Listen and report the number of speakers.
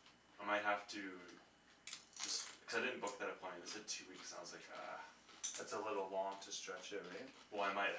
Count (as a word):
two